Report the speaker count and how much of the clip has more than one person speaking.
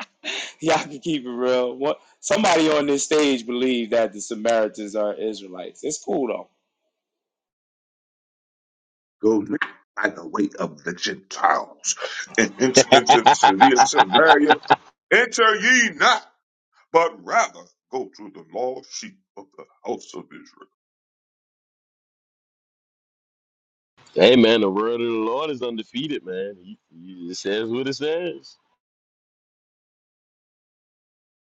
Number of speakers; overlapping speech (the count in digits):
3, no overlap